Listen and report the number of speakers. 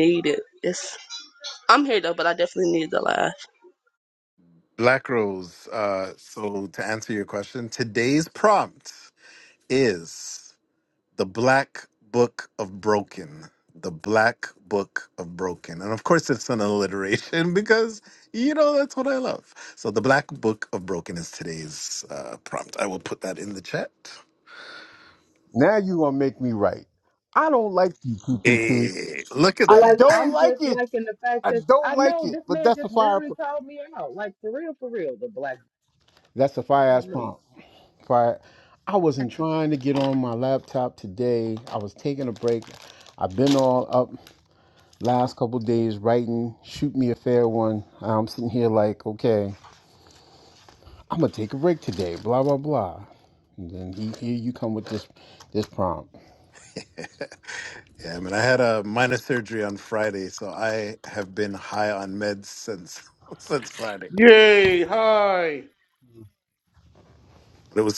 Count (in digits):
5